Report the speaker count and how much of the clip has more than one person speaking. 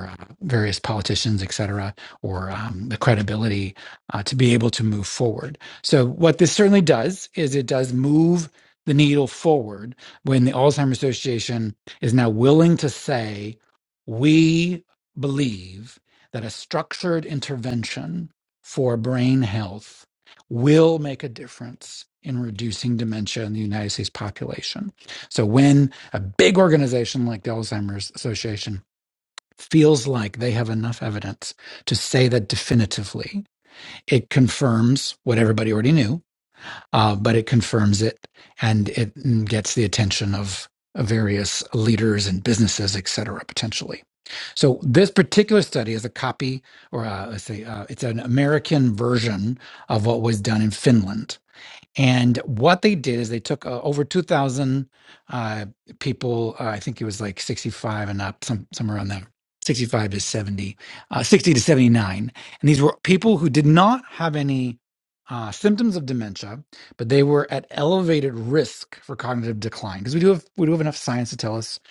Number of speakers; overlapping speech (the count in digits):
1, no overlap